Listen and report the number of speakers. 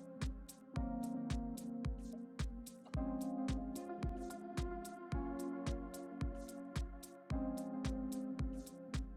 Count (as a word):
zero